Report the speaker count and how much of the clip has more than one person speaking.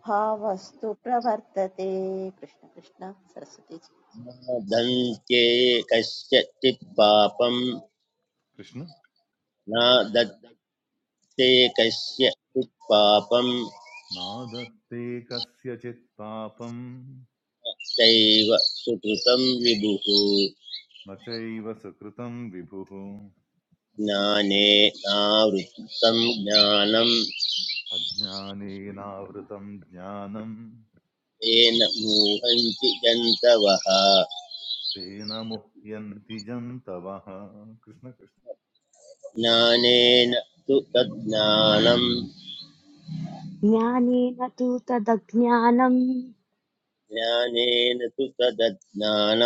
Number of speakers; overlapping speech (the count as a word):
four, about 1%